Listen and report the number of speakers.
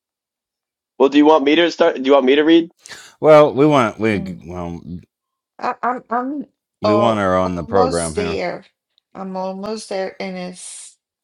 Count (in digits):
3